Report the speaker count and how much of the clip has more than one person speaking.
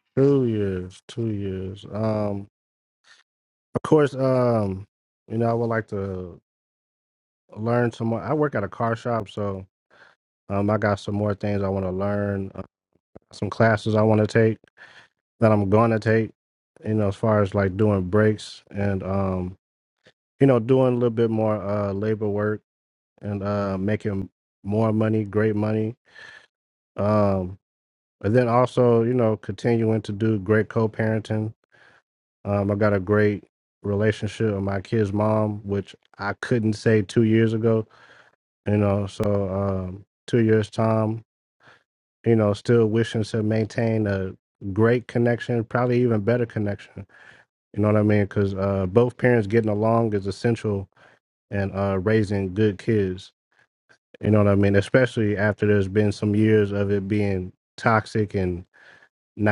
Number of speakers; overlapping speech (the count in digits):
1, no overlap